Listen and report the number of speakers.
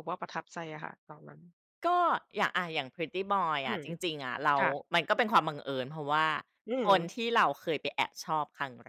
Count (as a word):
two